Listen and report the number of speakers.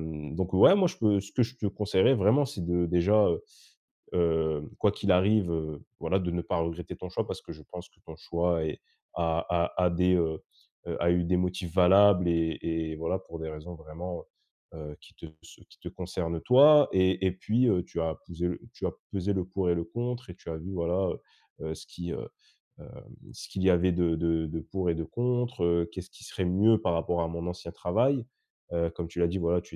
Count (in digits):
1